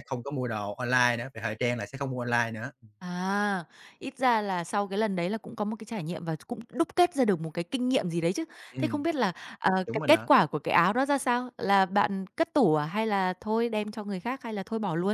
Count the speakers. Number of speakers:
two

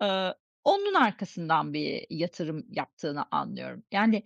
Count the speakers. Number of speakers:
one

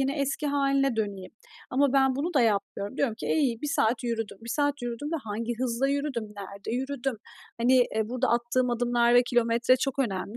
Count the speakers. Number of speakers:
one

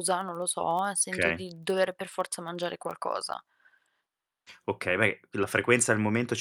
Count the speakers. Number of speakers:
two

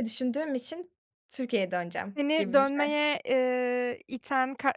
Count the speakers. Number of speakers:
two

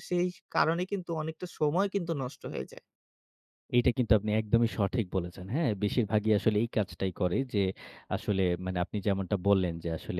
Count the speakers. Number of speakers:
two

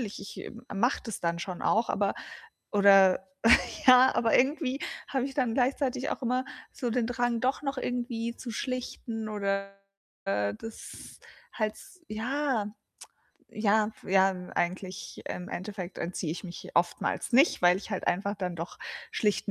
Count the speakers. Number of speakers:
one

